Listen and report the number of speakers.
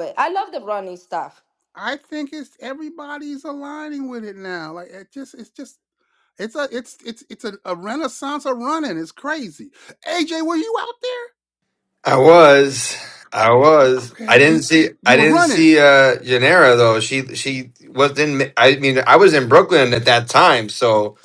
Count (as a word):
three